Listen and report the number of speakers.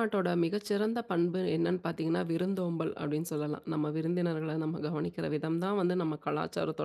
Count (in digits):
1